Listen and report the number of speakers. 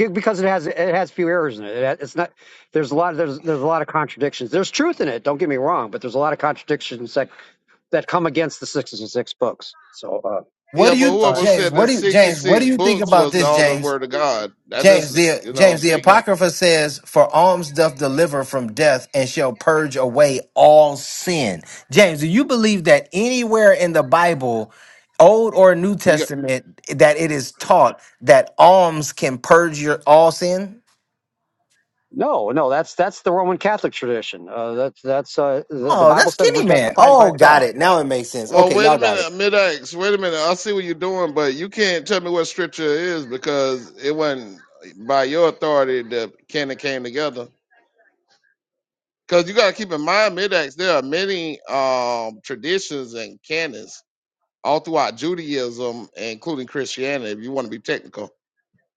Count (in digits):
3